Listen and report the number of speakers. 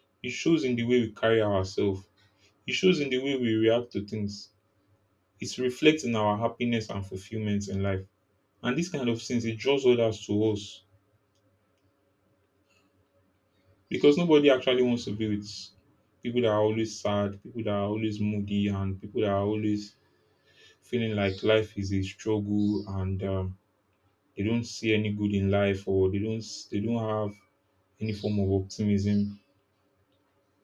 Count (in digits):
1